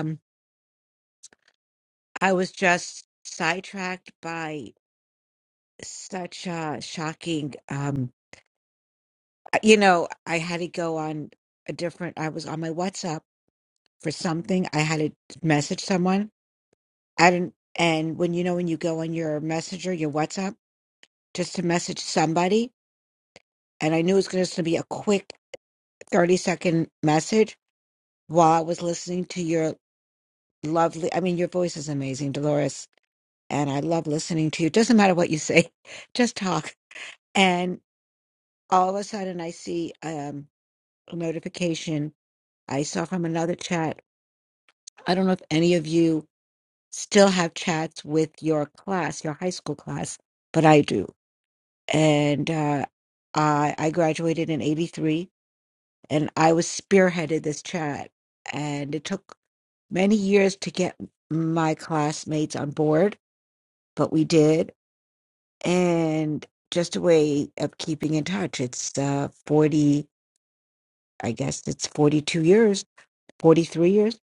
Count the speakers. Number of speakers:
1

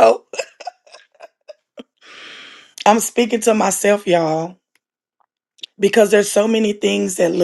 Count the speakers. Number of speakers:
1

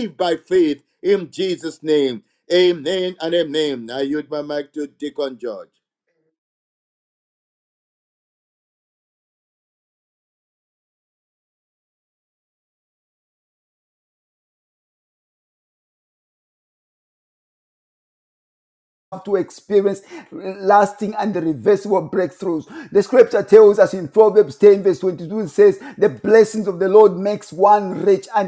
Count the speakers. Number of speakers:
2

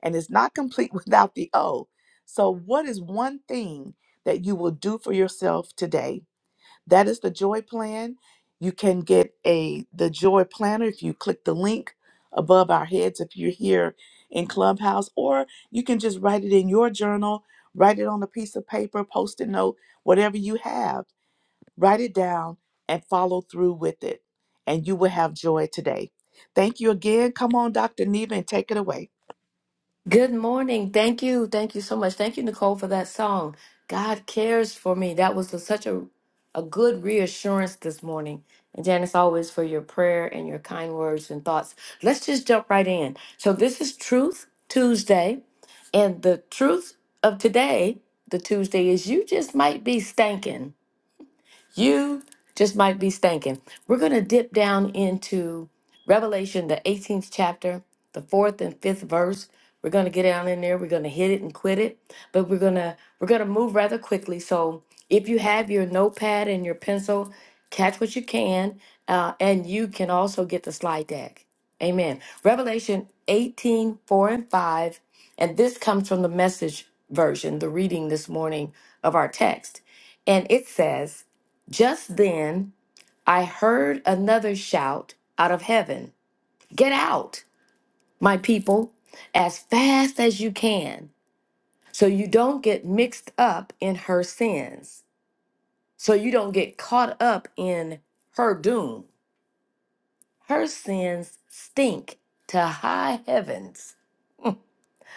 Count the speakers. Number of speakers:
2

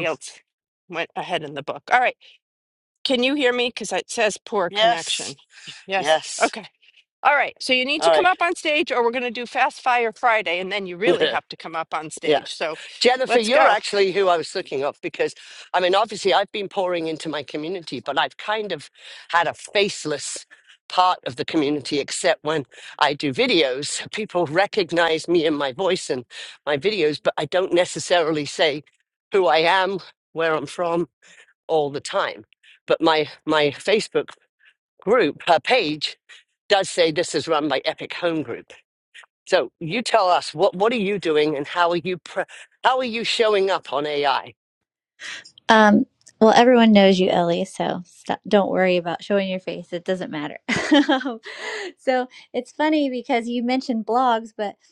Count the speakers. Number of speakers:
3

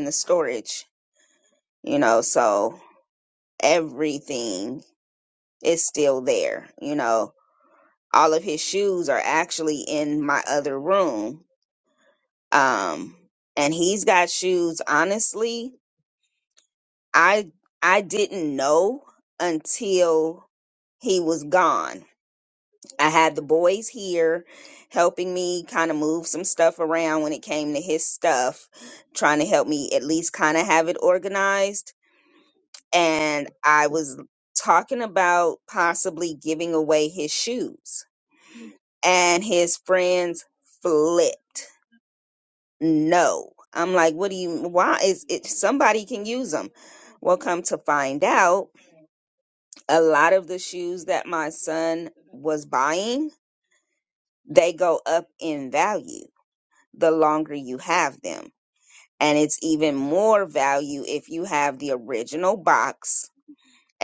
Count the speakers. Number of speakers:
1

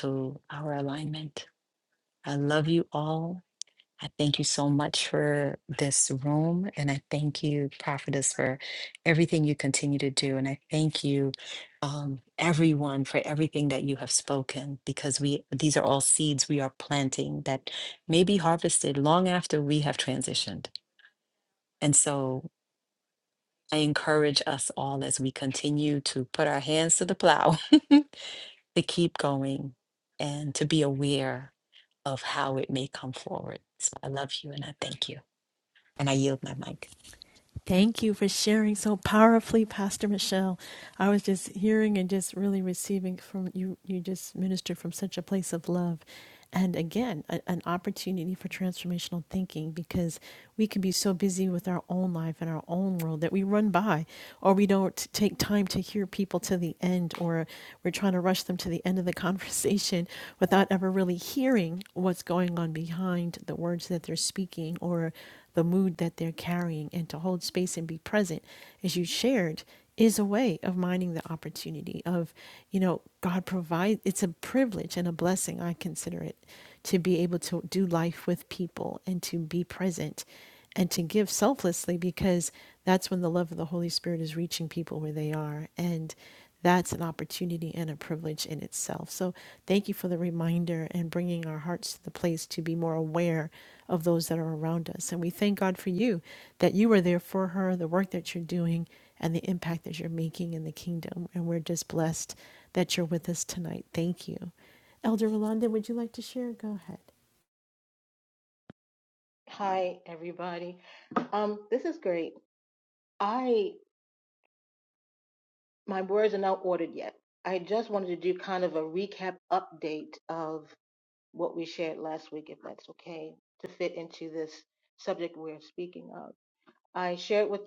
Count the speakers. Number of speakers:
3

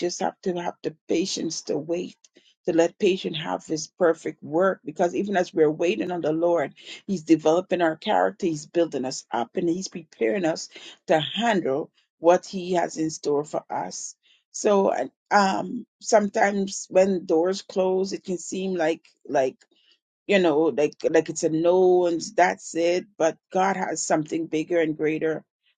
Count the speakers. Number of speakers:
1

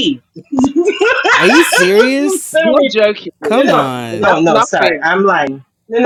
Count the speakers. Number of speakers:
3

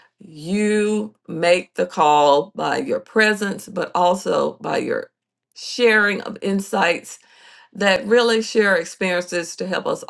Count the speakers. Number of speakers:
1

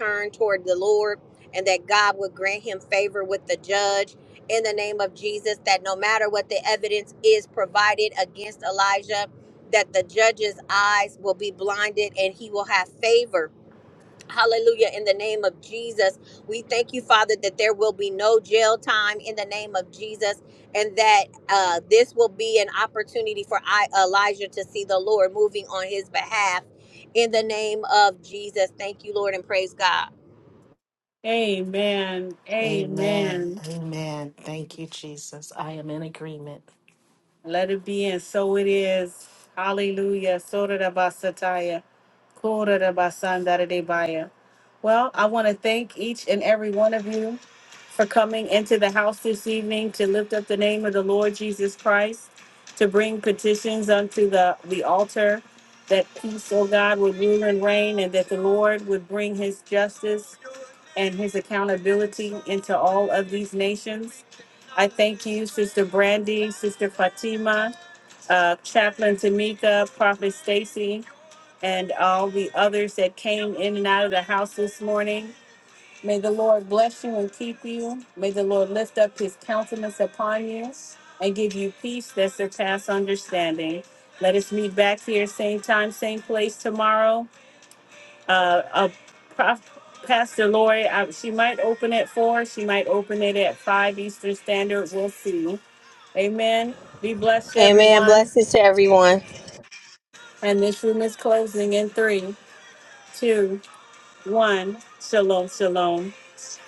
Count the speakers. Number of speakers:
3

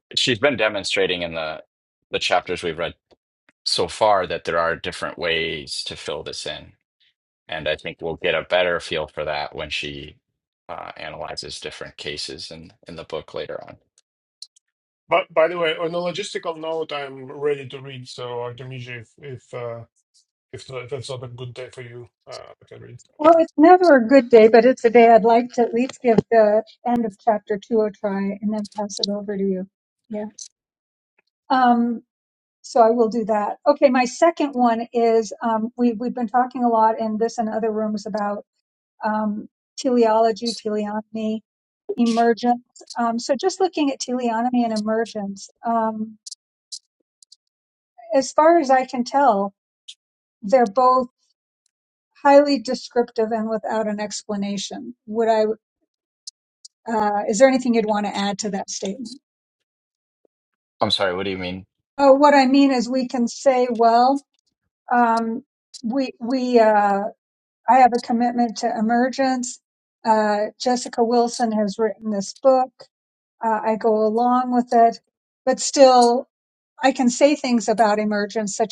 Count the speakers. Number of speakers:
3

